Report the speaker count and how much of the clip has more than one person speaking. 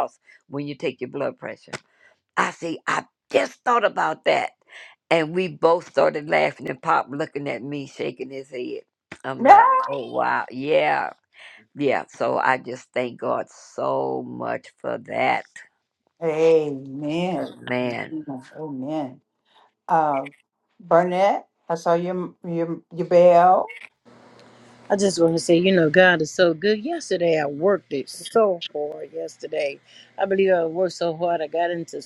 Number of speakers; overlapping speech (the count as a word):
three, about 1%